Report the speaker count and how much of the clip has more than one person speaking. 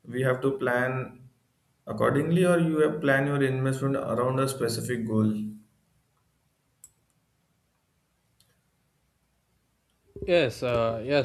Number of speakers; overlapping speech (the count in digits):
2, no overlap